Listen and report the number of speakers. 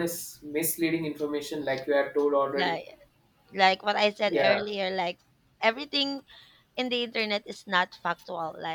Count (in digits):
2